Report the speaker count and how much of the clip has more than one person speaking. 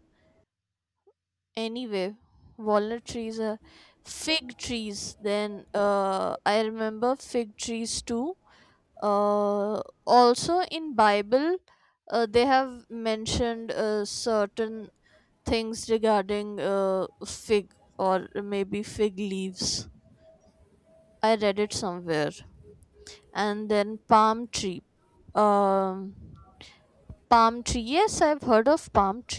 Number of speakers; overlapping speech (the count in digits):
1, no overlap